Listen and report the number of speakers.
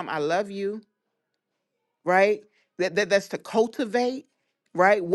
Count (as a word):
one